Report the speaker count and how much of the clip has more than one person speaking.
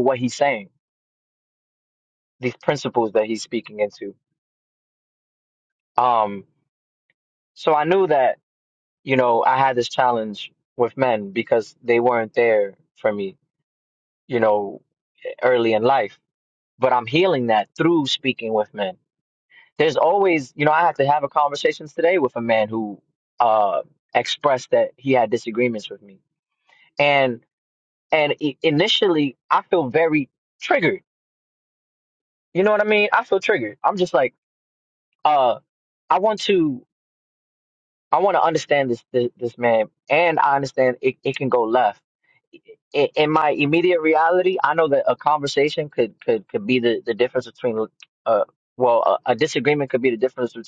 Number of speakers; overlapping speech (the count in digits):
1, no overlap